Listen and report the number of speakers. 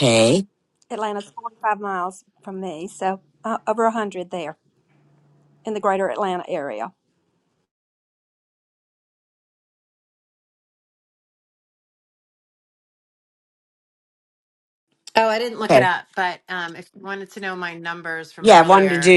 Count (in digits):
3